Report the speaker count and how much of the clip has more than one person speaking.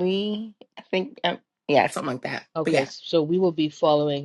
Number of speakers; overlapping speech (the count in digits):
2, about 8%